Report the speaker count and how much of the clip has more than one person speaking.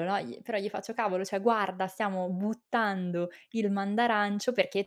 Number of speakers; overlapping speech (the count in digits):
1, no overlap